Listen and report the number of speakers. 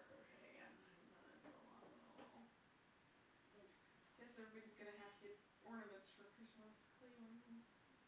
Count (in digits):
2